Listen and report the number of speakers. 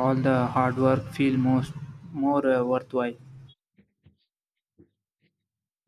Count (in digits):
1